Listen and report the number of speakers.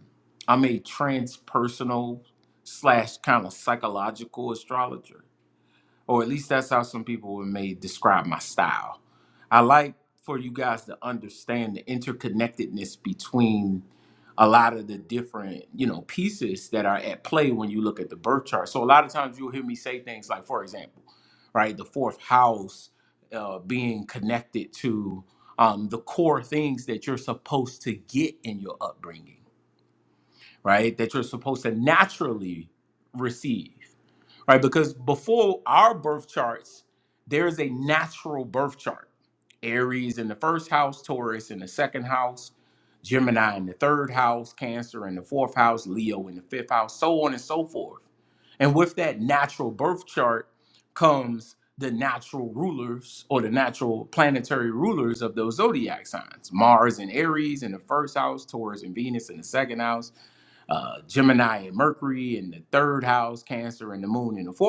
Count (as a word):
one